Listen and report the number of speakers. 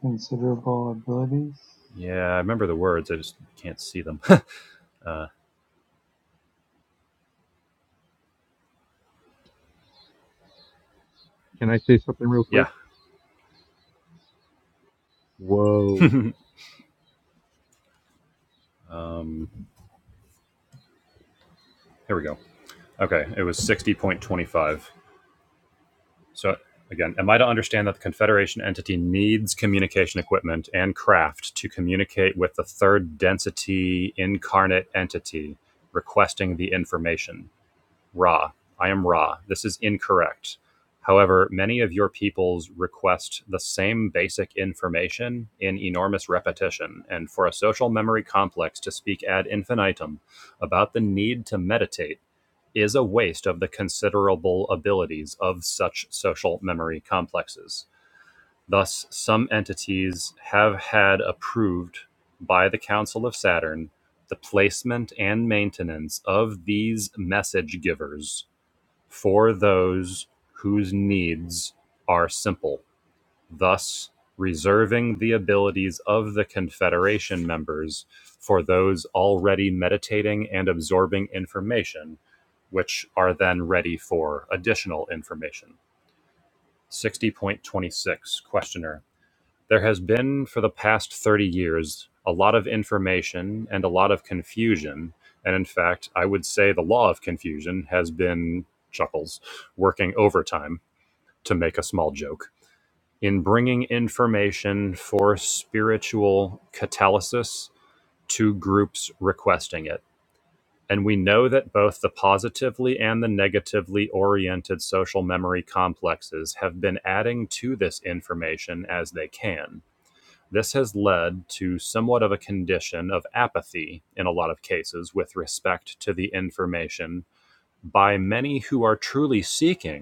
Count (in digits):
3